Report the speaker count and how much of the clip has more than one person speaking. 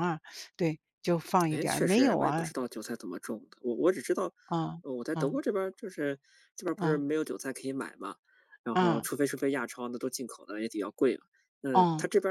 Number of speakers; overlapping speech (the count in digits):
2, about 16%